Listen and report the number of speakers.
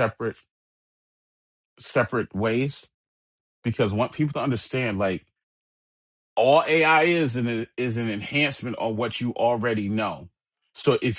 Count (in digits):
1